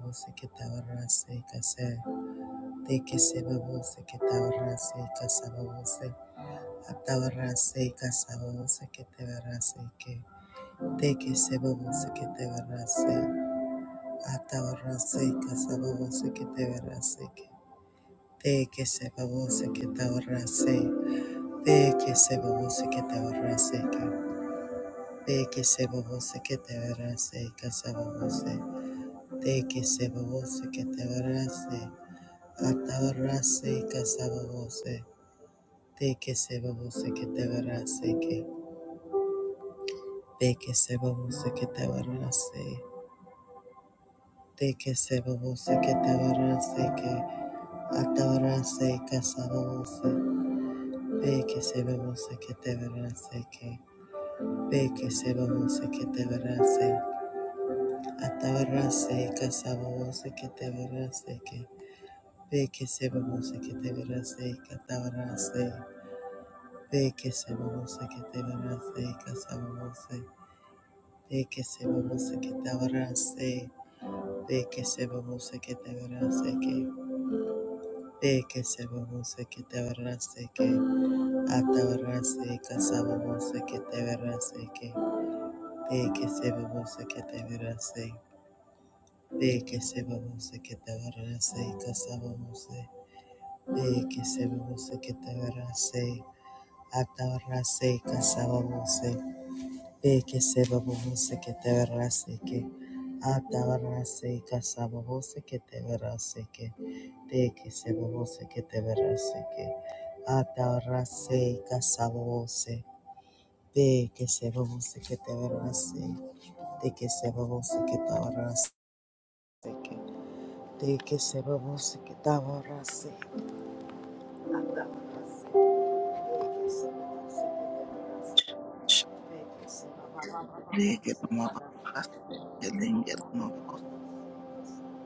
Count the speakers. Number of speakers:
2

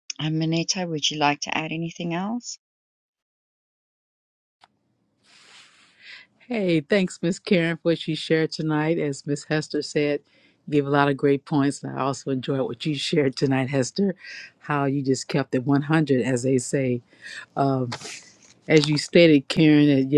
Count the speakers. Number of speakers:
2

